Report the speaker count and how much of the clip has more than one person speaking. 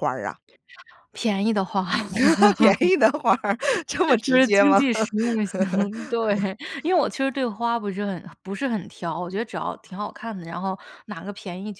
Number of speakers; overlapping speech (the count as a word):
two, about 3%